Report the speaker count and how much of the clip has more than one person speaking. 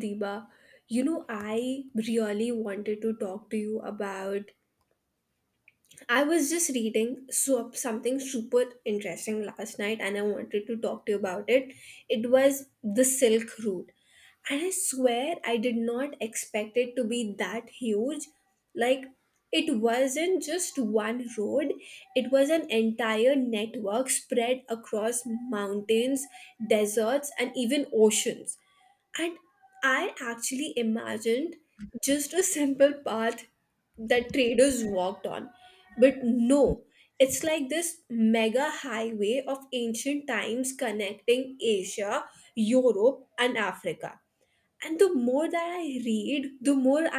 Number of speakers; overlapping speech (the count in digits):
1, no overlap